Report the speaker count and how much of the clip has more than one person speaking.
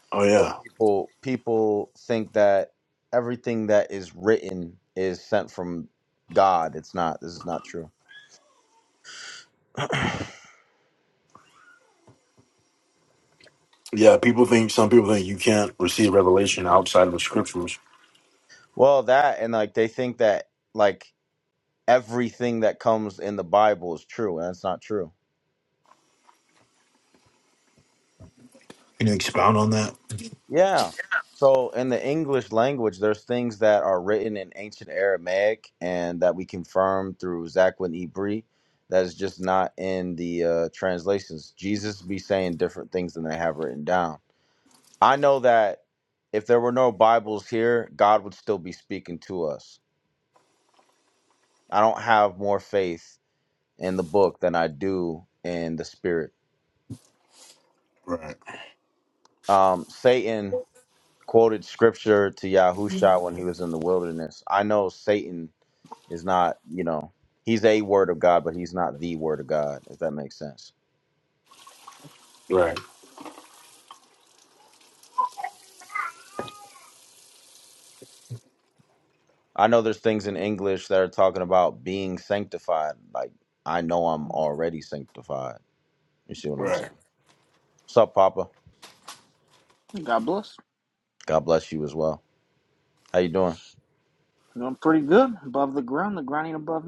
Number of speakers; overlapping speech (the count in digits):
3, about 1%